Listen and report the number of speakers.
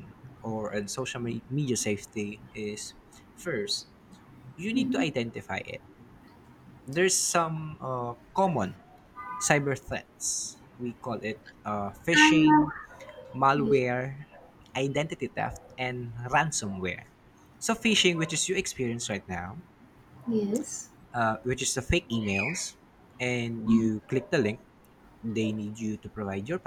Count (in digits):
2